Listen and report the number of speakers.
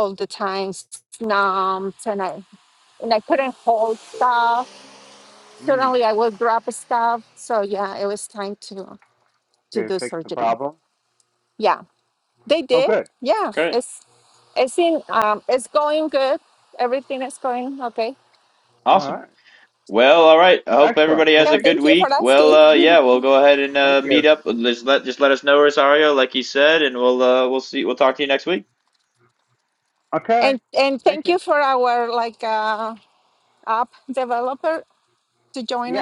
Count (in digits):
3